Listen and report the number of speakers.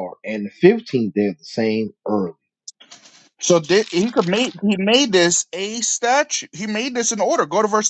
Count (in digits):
2